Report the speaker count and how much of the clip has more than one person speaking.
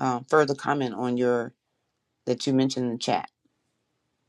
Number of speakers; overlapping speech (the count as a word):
one, no overlap